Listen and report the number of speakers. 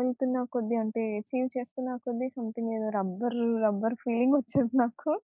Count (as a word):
one